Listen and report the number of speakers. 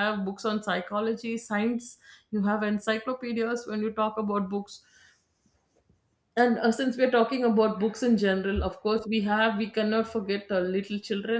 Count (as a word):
one